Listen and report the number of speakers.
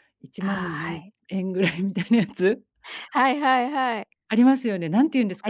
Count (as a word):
two